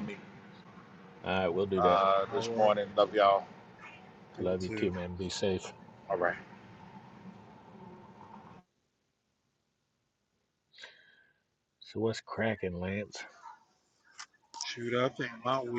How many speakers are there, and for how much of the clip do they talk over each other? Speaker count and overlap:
three, about 8%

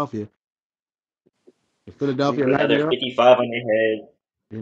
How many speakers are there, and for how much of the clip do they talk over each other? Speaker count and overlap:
two, about 12%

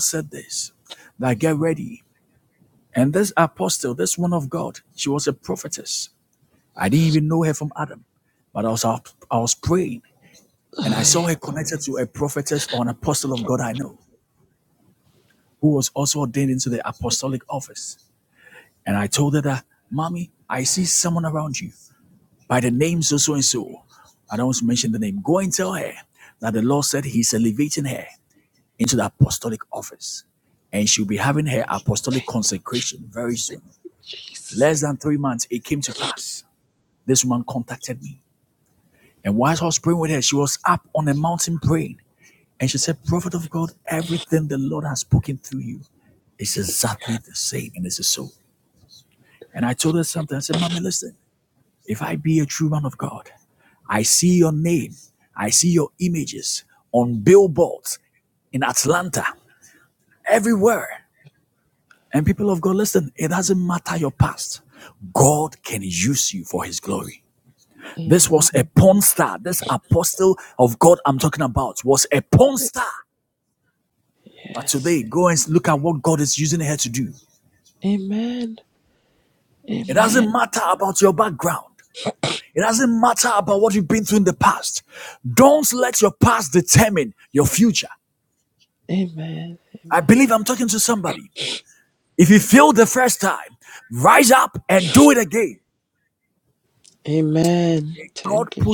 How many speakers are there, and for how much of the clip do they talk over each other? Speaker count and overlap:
two, about 2%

